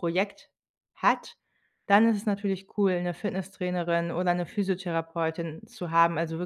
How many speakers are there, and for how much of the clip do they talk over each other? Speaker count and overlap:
one, no overlap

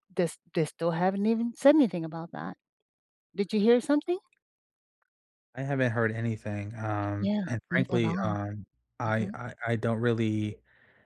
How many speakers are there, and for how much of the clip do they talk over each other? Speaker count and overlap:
two, about 13%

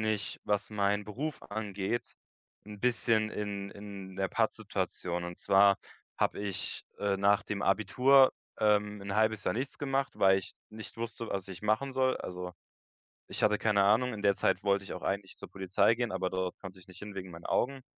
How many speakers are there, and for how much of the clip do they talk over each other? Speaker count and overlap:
one, no overlap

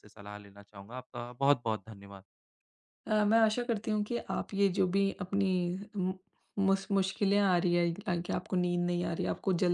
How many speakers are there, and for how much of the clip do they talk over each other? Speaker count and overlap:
two, no overlap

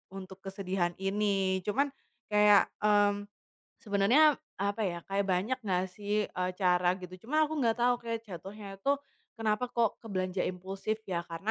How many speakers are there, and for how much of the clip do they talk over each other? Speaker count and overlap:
one, no overlap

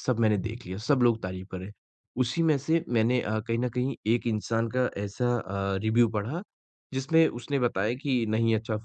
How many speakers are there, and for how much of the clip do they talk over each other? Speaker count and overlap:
one, no overlap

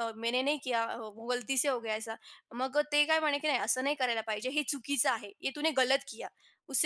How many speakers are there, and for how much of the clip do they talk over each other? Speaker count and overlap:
one, no overlap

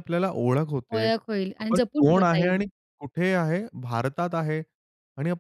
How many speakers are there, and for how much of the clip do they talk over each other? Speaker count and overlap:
two, about 22%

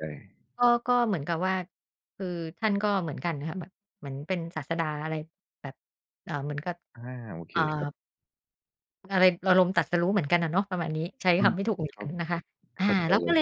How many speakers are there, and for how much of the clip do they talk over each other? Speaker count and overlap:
two, about 8%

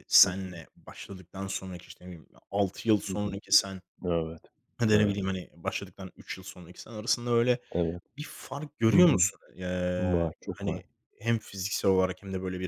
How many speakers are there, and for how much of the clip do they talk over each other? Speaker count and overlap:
two, about 16%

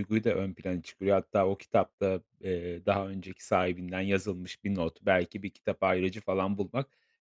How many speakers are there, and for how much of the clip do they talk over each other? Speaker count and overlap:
one, no overlap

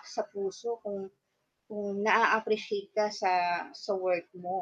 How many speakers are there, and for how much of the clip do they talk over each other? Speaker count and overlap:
one, no overlap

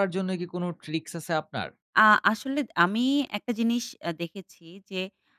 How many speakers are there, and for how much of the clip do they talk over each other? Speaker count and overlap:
two, no overlap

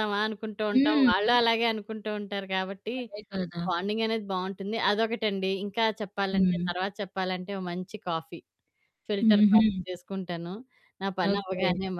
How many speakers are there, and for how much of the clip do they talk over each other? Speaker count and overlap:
two, about 18%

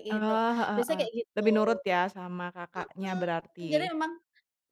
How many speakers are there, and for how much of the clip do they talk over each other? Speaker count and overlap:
two, about 32%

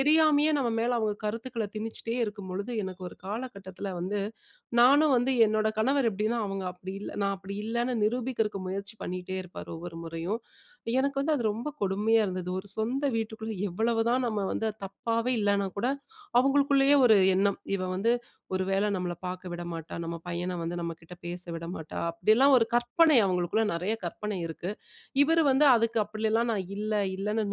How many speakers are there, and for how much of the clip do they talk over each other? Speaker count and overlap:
one, no overlap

